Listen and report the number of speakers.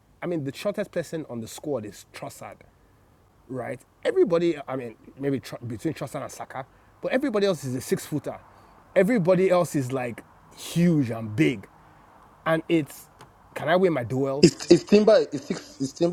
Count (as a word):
two